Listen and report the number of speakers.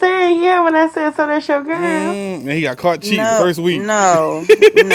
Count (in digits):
3